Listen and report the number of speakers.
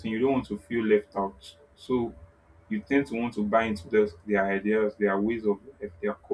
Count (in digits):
1